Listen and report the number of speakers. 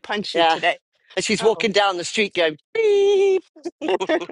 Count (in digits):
2